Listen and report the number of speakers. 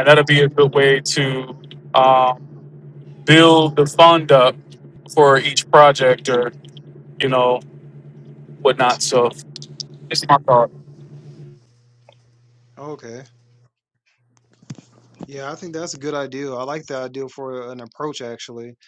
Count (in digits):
2